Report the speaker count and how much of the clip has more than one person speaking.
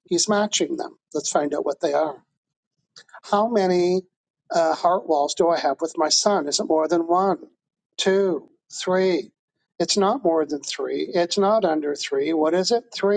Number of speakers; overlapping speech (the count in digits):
1, no overlap